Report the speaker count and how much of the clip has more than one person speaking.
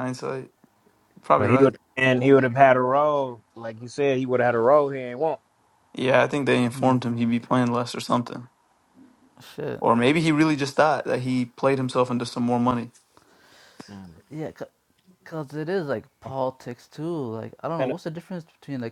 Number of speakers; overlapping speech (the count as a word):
three, about 4%